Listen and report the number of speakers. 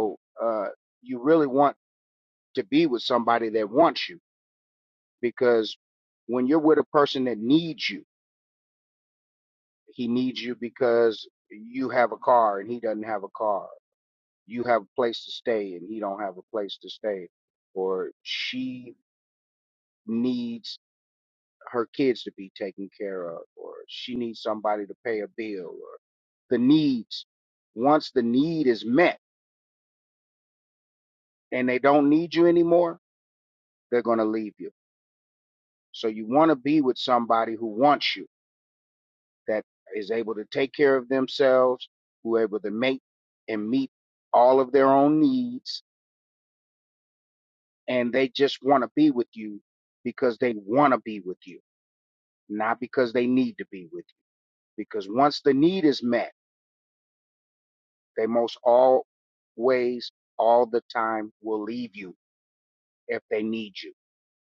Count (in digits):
1